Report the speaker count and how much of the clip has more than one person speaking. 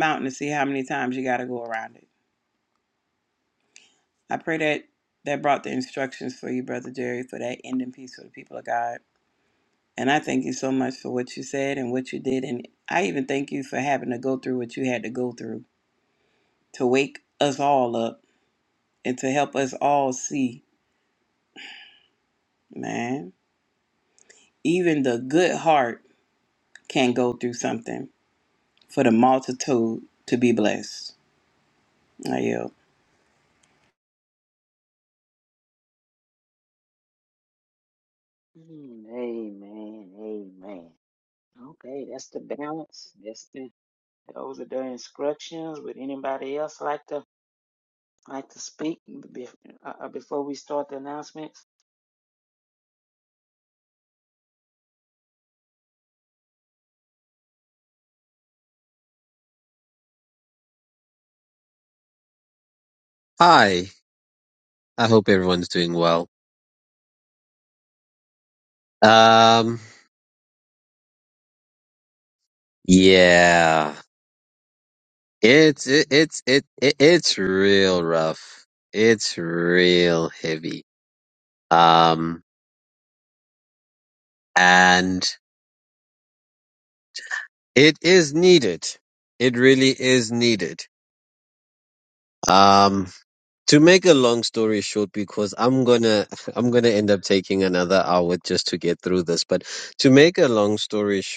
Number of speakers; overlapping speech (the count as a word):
three, no overlap